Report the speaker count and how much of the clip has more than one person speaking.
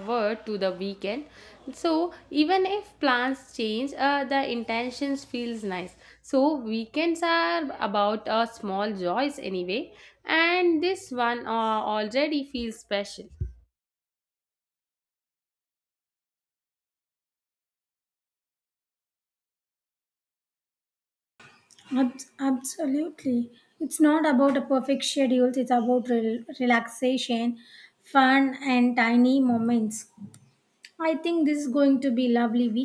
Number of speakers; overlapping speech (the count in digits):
2, no overlap